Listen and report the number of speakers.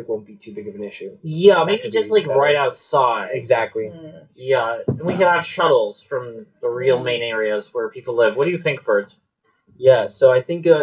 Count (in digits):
3